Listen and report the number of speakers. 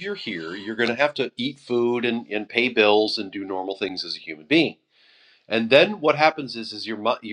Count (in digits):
1